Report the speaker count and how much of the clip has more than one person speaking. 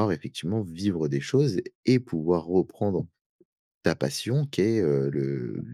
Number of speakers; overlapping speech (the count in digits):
1, no overlap